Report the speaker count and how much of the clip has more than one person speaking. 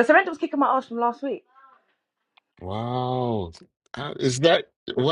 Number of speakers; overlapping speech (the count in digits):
2, no overlap